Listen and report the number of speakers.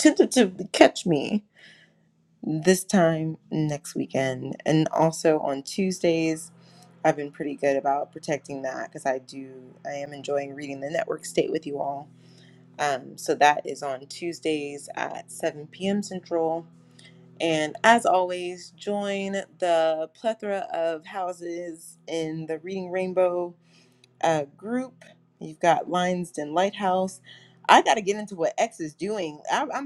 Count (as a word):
one